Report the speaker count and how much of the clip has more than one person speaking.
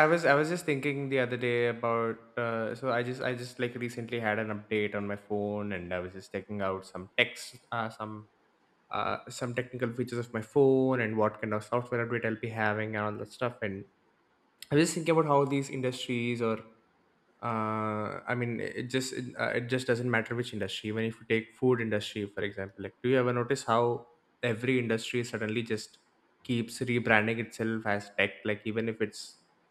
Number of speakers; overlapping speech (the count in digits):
1, no overlap